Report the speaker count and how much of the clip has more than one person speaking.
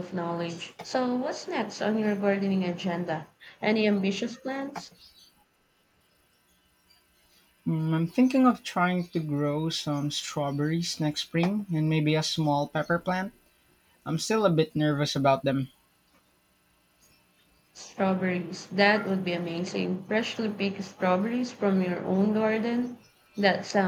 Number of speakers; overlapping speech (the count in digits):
2, no overlap